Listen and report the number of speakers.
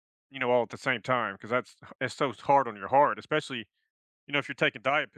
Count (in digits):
1